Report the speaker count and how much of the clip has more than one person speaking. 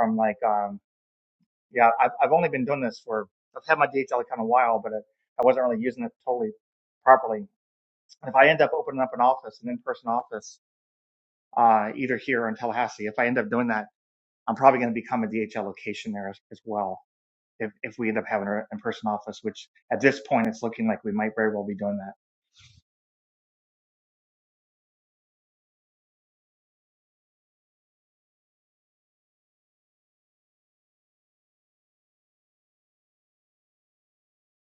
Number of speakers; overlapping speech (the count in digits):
1, no overlap